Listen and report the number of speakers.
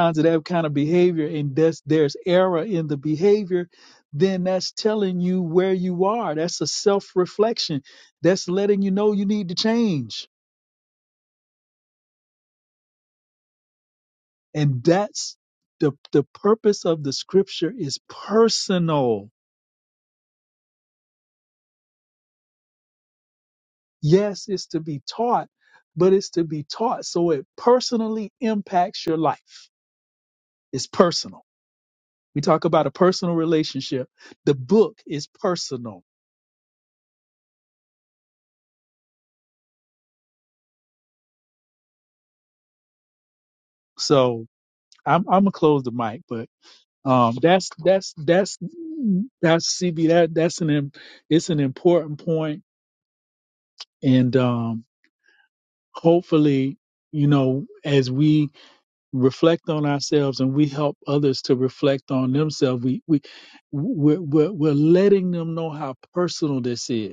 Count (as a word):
one